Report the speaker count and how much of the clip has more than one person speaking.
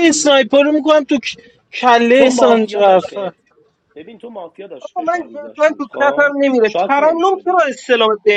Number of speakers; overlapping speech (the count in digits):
3, about 48%